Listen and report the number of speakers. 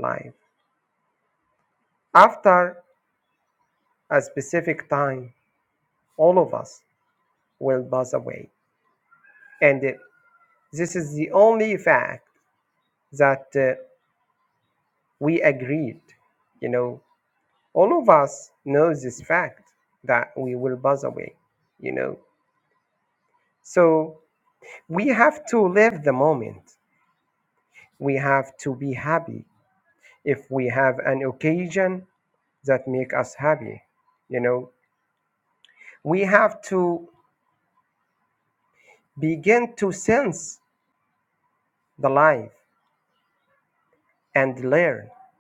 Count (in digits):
1